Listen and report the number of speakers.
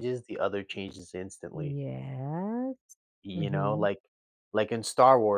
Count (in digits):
2